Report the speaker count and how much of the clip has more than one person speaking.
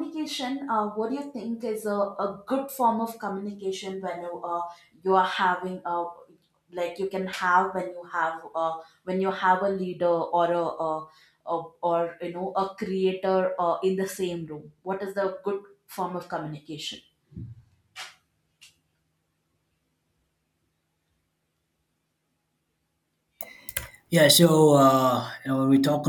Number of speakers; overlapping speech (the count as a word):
two, no overlap